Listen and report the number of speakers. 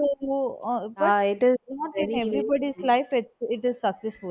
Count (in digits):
2